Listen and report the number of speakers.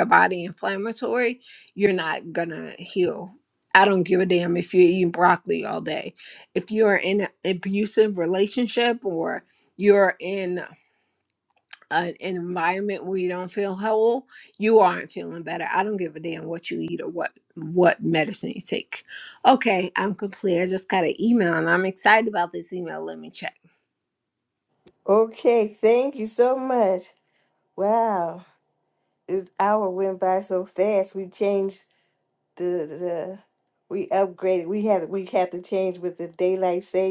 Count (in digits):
2